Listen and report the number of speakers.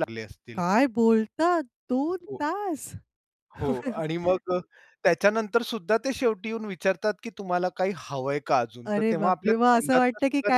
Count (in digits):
2